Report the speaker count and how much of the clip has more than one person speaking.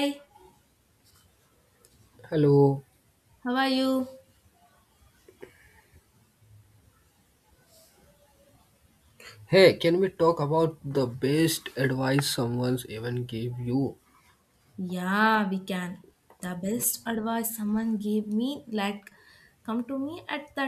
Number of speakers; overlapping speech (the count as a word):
two, no overlap